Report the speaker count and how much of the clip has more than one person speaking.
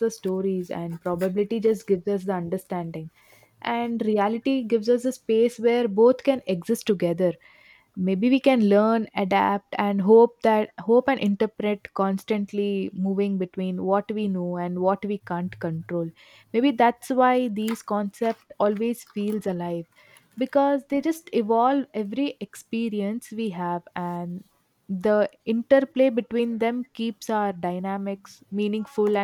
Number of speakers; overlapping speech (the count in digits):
1, no overlap